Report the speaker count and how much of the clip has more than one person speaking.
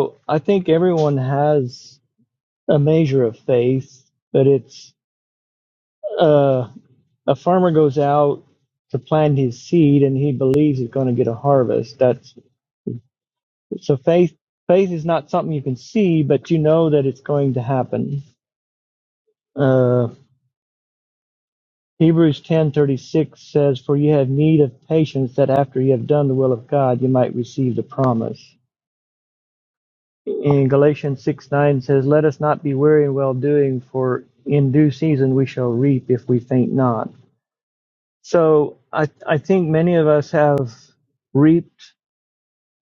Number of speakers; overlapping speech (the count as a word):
one, no overlap